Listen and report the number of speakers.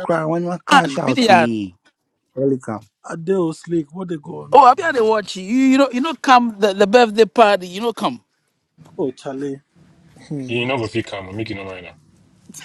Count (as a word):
four